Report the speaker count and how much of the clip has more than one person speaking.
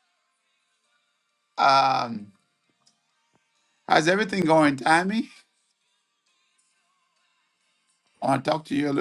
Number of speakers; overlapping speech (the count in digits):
1, no overlap